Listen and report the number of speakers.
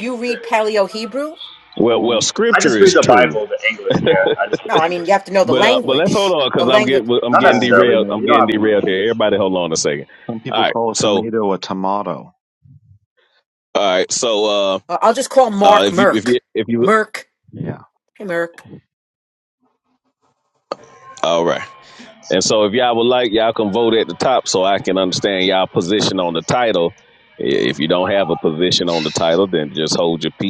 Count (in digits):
4